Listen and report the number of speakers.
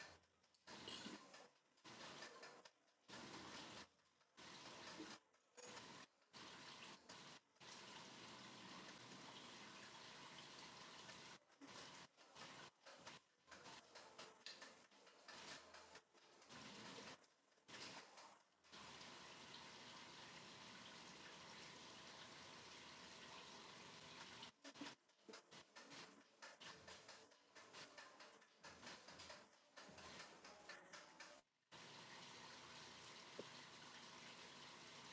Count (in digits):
0